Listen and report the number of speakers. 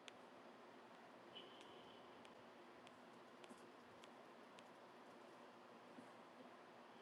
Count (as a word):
zero